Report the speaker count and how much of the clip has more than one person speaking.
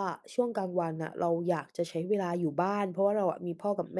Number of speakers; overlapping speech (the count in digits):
1, no overlap